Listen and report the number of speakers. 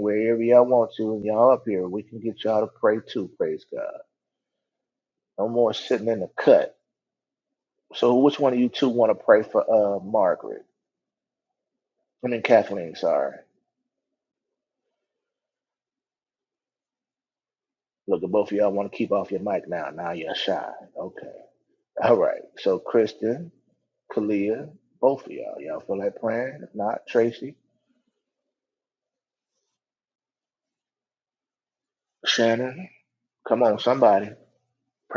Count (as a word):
one